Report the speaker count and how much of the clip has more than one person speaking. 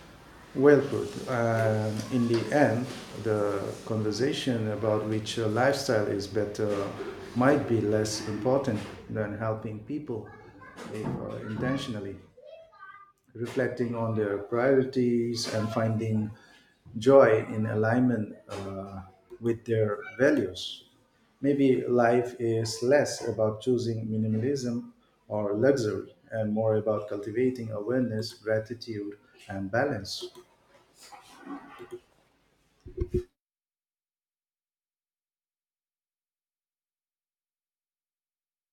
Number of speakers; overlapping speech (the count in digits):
1, no overlap